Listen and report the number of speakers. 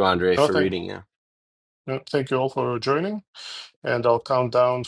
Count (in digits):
2